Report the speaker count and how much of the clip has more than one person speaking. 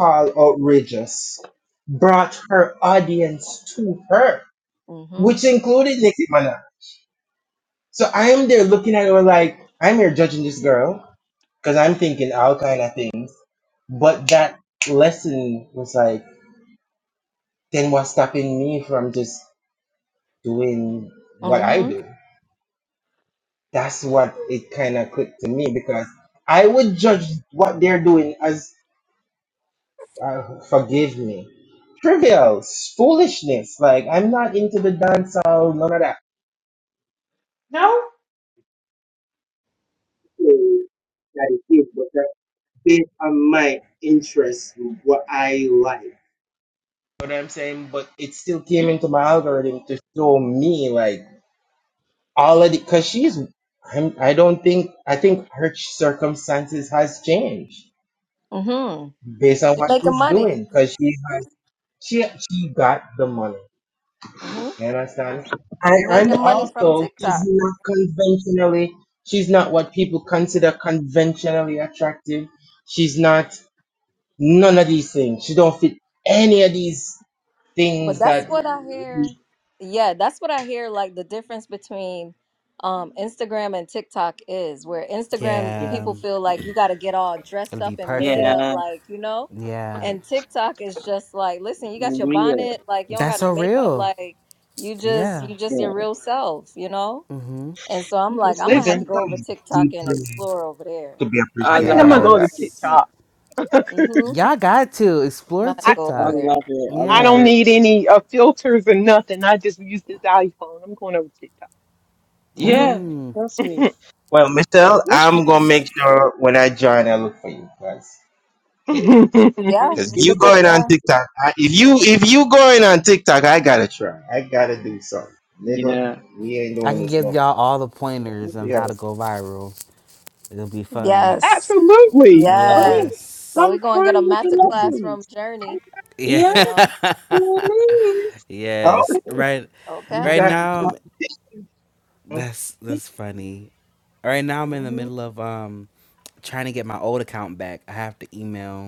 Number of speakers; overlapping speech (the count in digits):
5, about 14%